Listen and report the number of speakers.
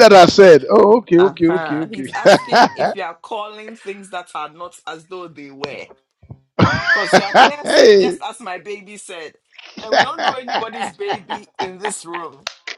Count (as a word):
two